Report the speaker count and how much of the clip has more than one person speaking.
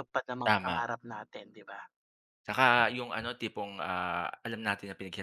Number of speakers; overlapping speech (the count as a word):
two, about 7%